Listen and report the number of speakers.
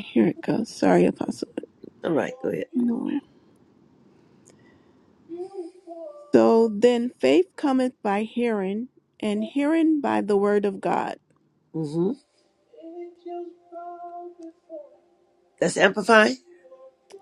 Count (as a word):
two